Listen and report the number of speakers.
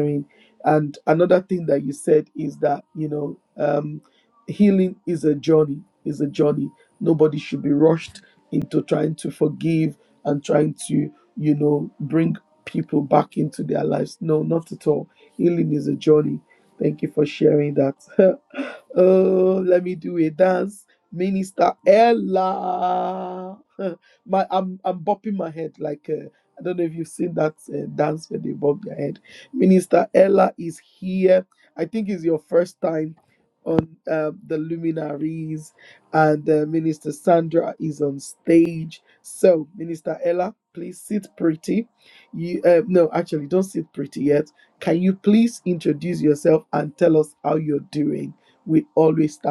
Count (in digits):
1